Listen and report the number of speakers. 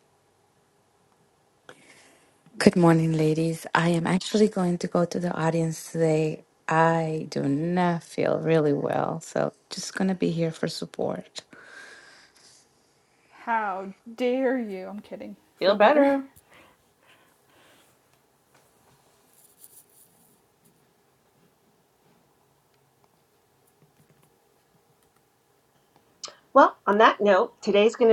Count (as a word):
three